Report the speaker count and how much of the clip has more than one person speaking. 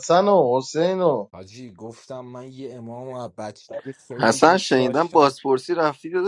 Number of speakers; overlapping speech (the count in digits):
3, about 18%